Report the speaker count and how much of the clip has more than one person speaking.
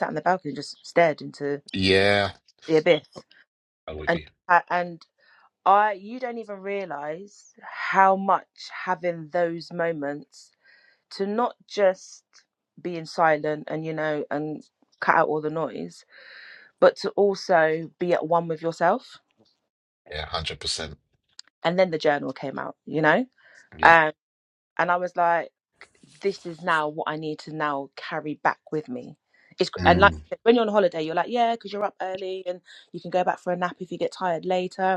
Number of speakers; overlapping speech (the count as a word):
two, about 2%